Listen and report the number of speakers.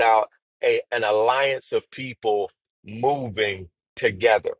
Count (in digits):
1